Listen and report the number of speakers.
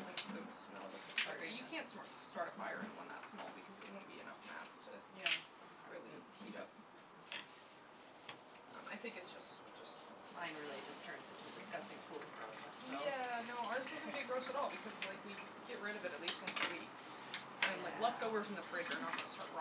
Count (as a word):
two